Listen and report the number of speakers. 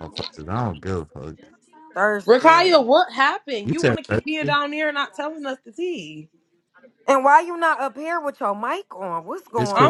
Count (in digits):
3